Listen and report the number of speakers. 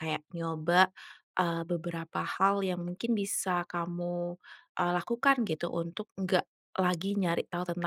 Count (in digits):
1